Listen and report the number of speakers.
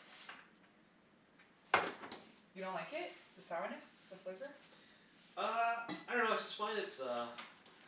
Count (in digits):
2